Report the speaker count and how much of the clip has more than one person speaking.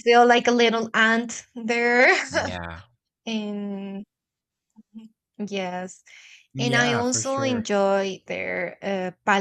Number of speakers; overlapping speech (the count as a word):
two, about 11%